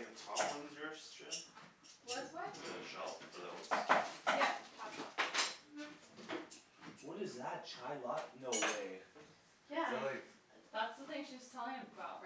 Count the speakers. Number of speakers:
4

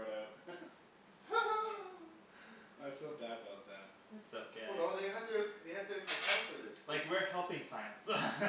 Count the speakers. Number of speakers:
3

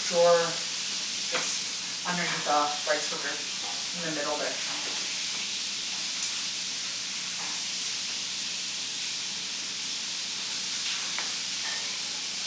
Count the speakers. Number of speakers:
1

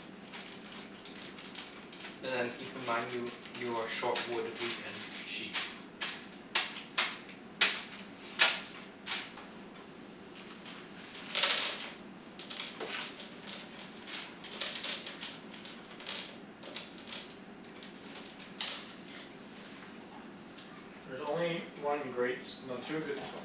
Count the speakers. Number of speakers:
2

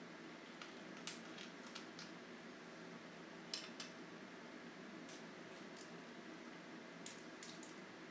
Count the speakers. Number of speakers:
0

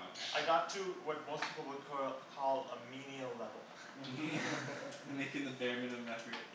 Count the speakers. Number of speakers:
2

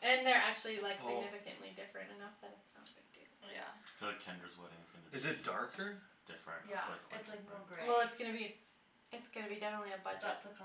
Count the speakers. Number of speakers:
4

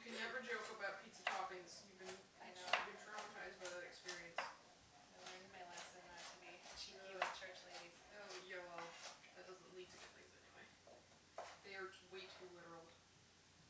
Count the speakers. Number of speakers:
2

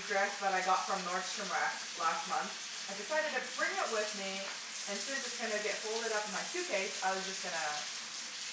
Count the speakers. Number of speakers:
1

